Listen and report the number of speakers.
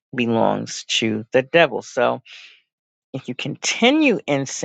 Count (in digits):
1